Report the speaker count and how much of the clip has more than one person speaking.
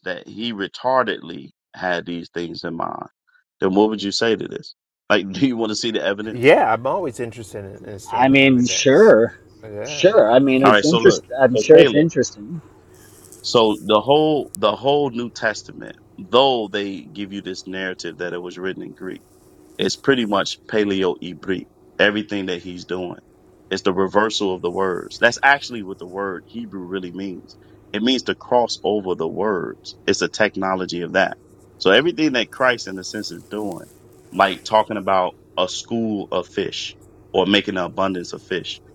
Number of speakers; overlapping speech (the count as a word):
three, about 6%